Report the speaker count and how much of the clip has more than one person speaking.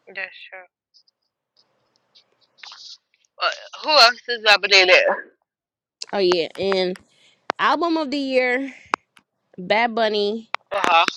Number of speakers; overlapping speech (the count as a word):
two, no overlap